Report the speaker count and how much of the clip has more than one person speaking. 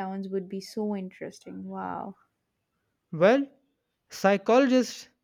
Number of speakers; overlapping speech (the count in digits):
2, no overlap